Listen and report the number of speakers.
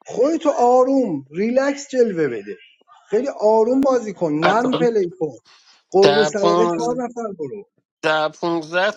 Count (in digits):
2